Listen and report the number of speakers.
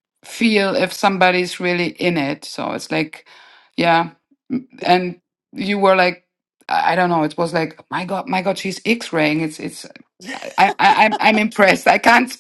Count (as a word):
one